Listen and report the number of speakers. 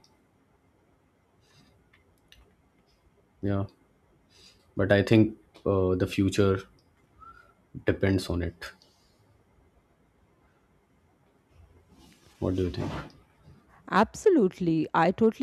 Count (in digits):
2